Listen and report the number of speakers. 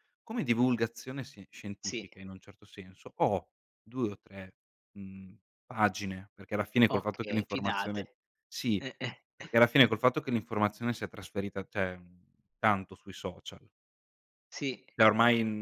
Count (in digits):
2